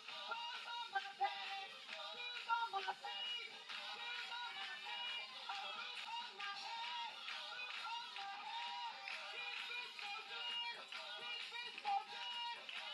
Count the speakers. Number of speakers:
zero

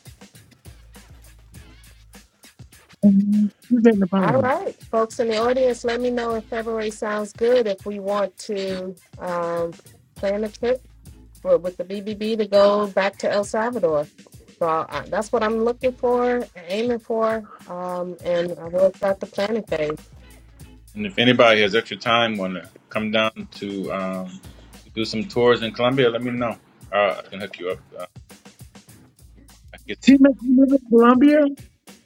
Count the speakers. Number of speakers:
three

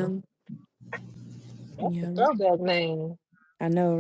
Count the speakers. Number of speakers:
two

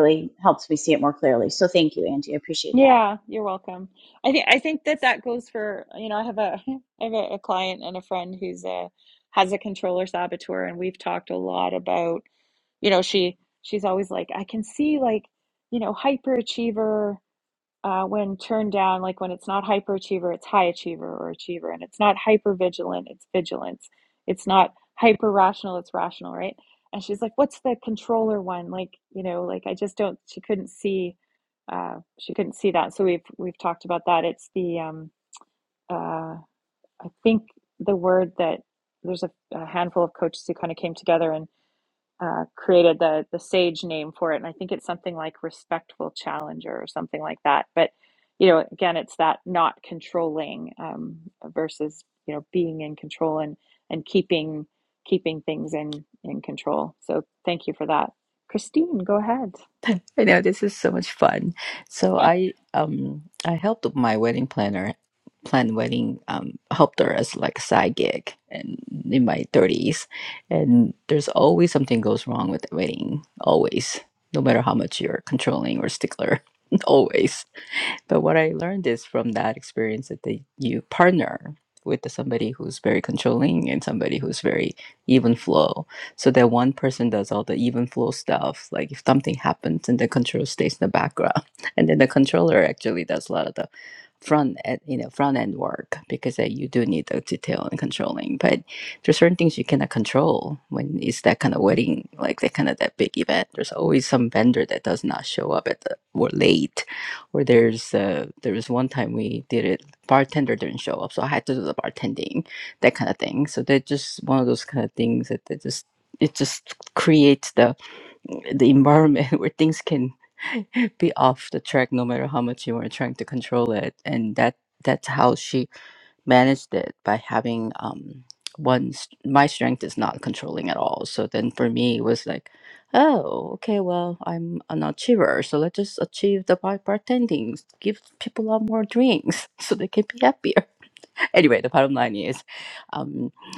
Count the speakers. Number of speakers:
three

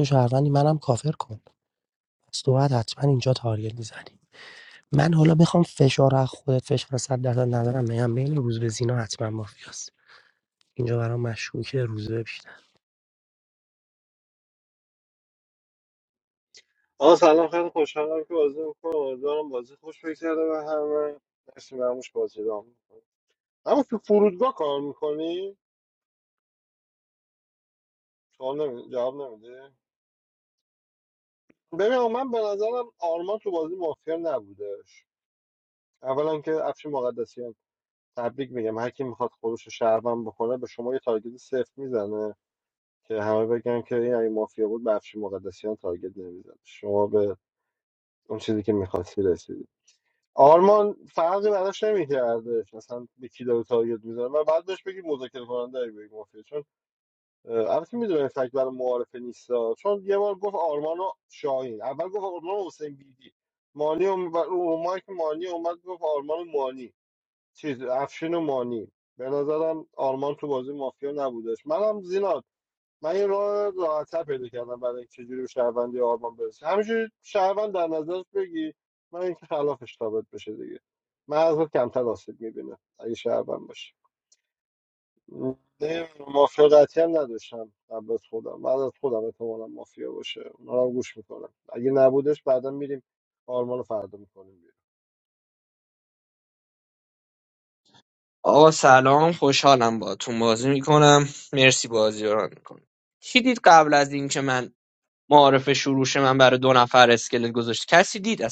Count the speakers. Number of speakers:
three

